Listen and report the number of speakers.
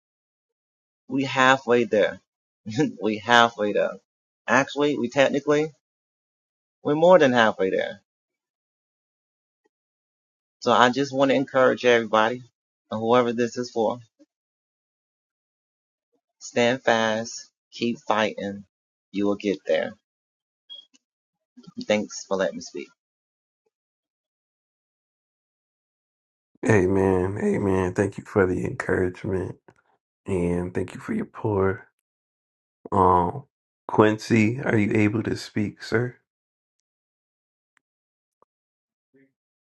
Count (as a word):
two